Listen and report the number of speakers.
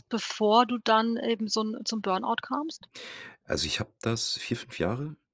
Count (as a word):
two